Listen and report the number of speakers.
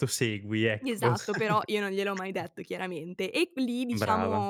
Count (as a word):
two